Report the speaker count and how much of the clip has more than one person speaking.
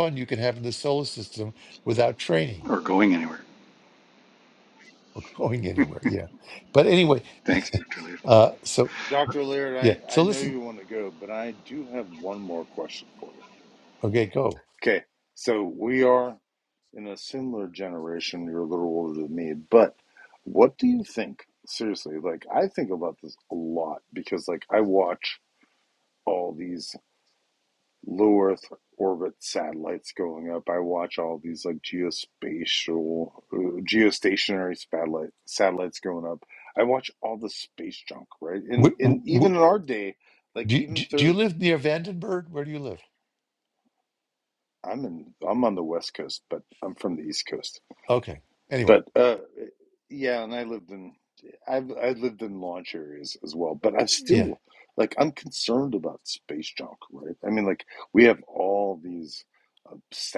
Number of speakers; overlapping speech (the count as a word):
three, about 3%